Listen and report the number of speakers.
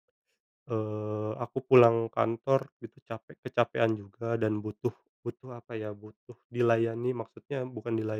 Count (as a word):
one